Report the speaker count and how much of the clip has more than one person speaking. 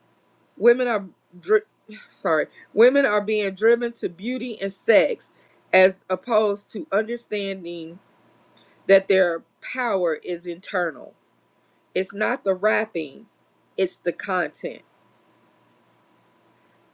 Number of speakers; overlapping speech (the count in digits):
1, no overlap